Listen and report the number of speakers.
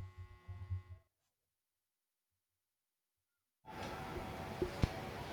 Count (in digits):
0